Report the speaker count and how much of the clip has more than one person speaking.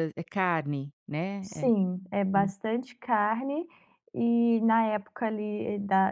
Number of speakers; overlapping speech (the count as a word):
two, about 2%